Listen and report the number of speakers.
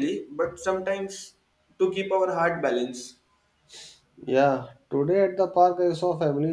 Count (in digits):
2